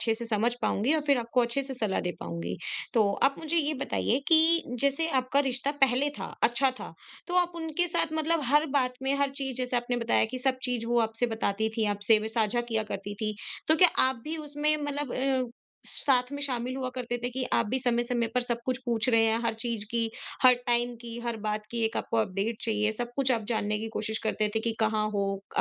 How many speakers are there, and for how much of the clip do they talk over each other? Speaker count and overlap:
one, no overlap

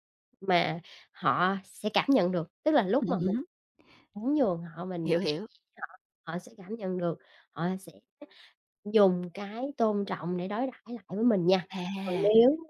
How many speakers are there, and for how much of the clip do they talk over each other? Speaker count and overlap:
two, about 7%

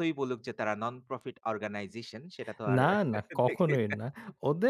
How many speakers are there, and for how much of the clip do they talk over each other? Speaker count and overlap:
two, about 9%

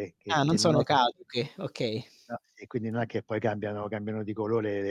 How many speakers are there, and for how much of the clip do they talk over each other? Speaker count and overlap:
two, about 12%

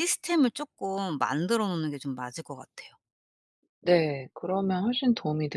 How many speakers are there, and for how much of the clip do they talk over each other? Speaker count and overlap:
two, no overlap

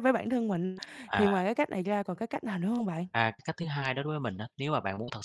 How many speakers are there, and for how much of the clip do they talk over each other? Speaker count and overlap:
two, about 3%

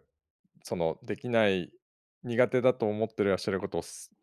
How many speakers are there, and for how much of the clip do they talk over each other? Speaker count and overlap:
one, no overlap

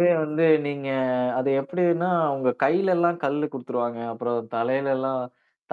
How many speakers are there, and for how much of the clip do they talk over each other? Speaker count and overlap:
one, no overlap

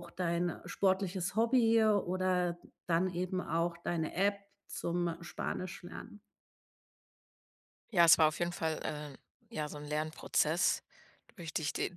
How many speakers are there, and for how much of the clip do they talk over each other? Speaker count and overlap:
two, no overlap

